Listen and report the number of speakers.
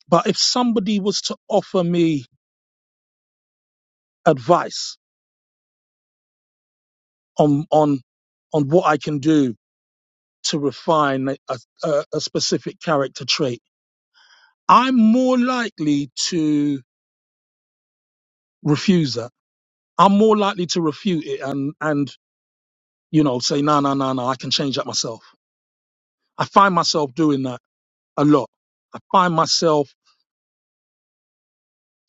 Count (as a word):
one